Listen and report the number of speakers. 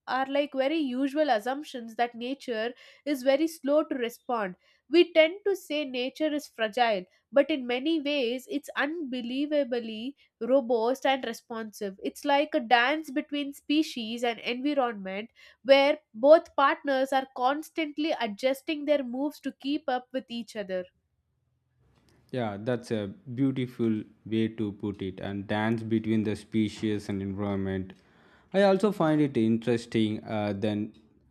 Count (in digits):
2